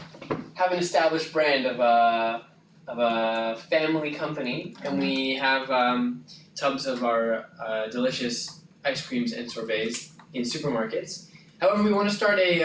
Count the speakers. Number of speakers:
one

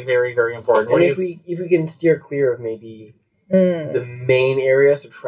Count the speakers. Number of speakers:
two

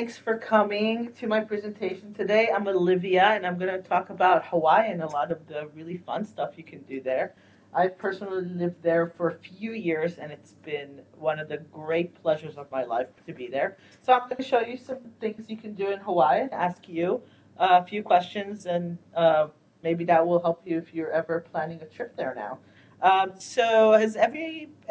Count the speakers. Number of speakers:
one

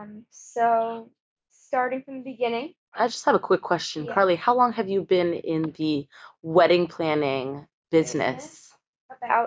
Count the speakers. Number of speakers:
two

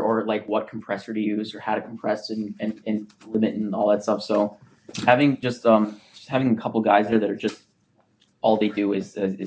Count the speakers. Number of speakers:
one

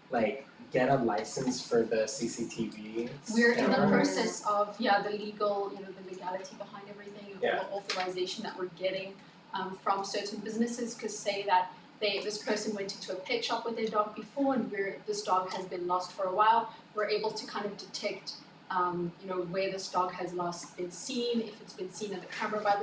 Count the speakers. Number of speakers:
two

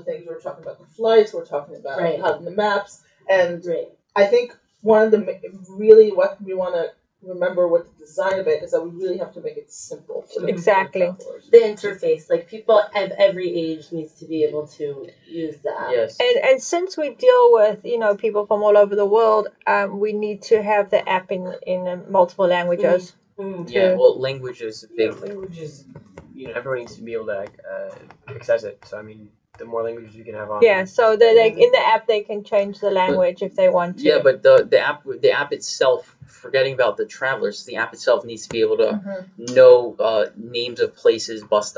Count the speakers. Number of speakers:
five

